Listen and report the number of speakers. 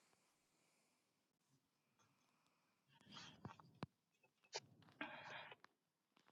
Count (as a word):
zero